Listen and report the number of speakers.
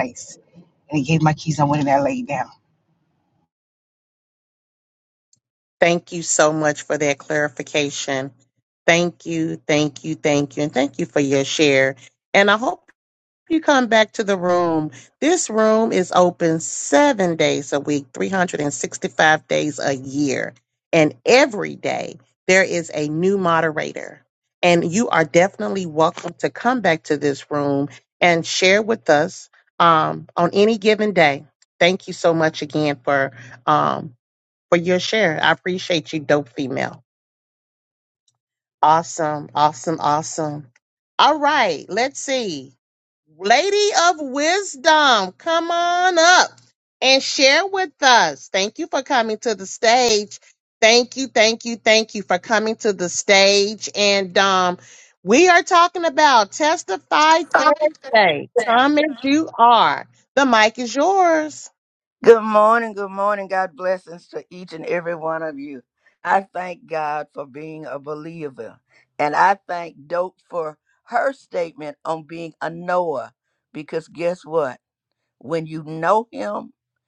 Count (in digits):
3